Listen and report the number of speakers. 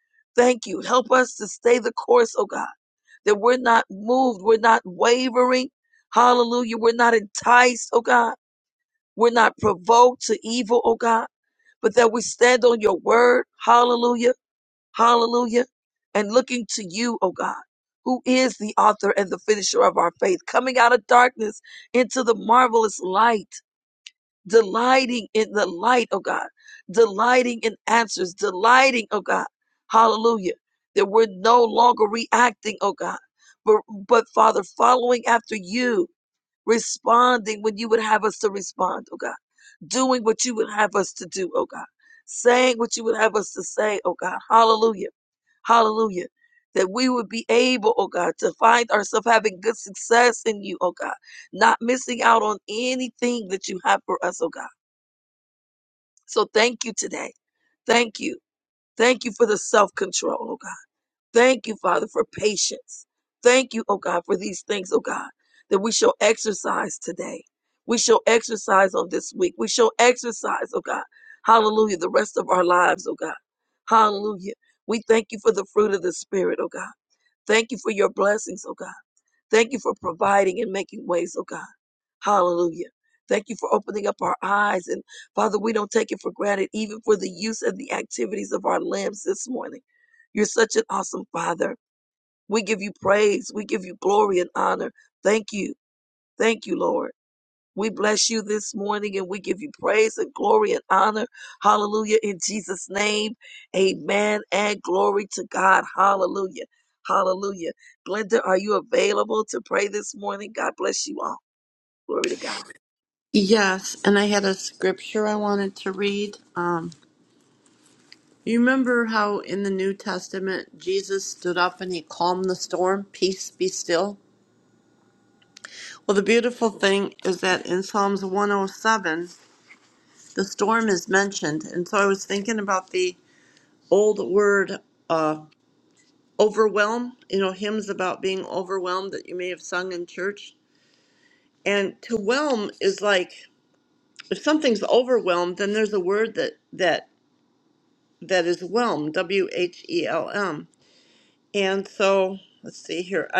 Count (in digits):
2